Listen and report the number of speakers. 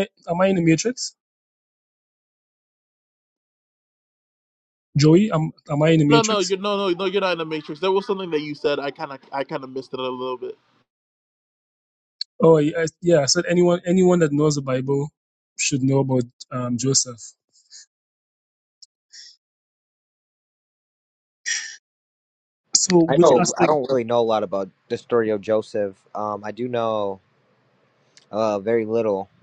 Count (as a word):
three